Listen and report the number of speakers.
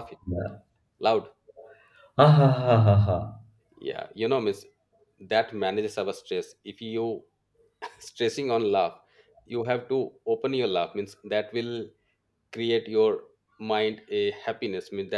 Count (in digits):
2